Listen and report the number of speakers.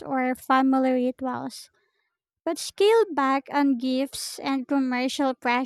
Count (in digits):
1